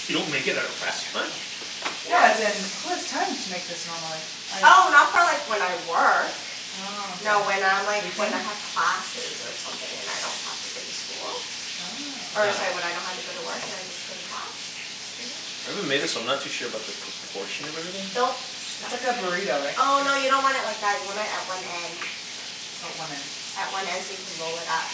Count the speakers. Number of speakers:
three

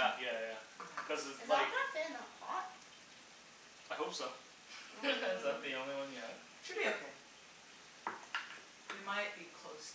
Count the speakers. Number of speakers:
four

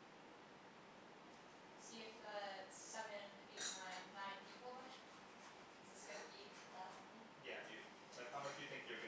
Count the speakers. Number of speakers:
two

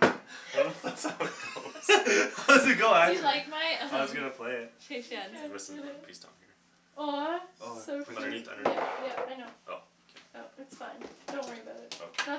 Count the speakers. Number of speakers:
four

